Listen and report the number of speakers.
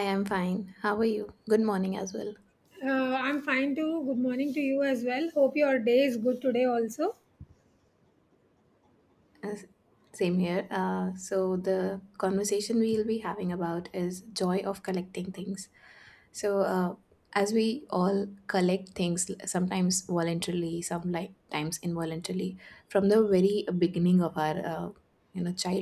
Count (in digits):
2